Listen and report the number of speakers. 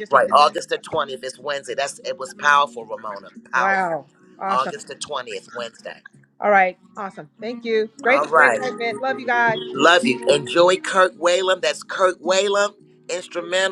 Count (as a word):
two